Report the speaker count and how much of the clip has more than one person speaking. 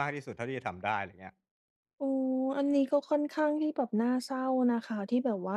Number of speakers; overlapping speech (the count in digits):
2, no overlap